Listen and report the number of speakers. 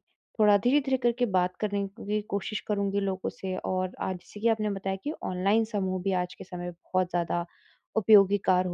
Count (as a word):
one